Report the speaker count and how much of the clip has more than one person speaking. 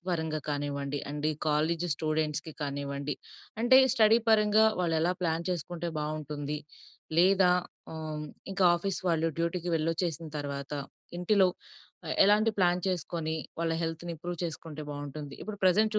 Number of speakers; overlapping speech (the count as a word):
one, no overlap